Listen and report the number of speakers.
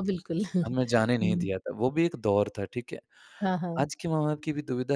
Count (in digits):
2